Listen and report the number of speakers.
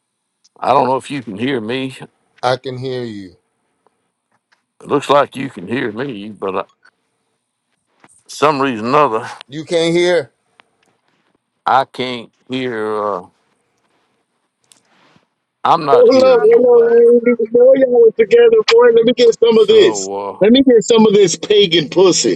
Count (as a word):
three